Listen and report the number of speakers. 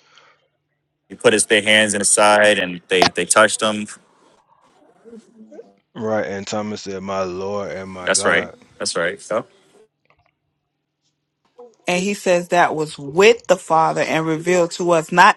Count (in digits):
3